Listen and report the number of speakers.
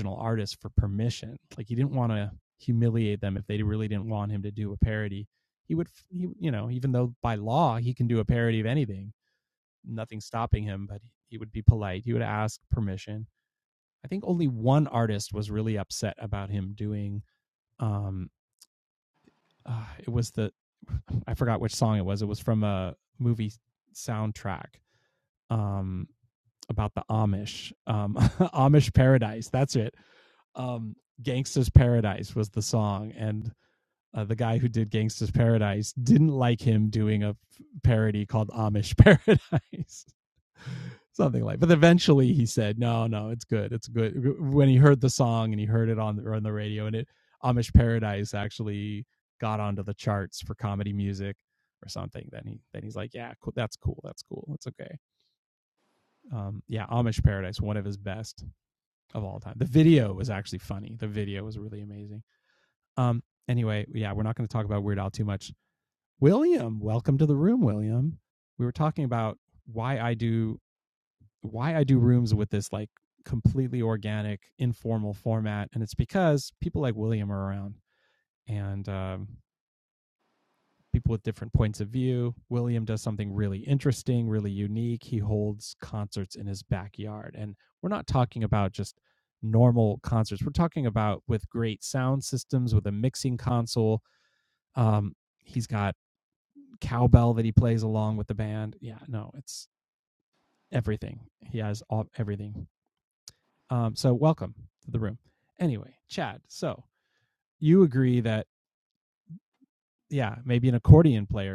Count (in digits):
1